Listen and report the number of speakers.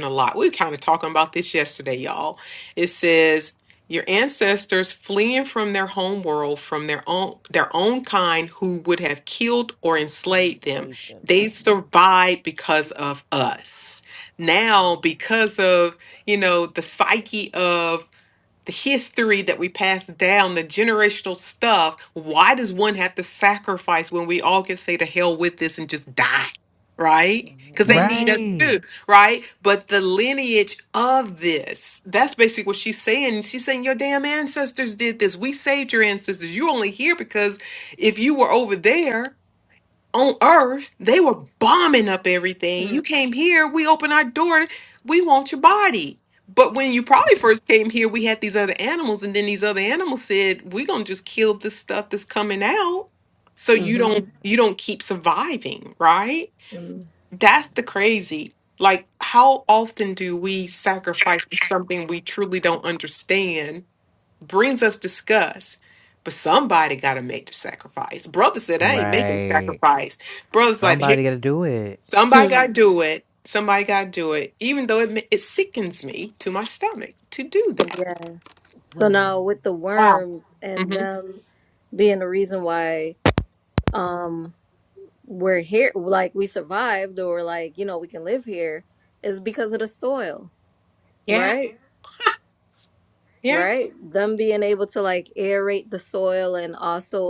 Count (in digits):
3